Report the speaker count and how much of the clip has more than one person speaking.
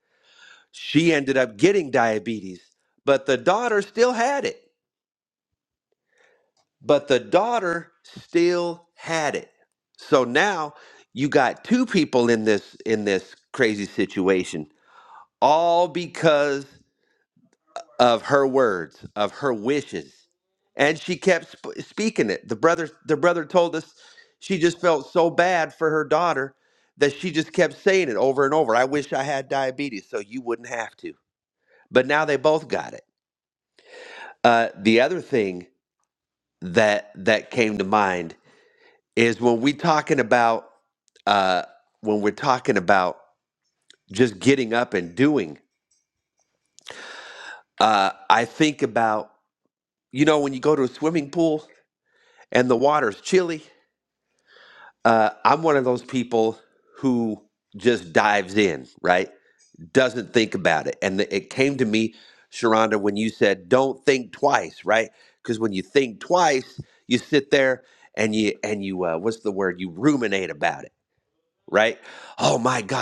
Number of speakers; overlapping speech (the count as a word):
one, no overlap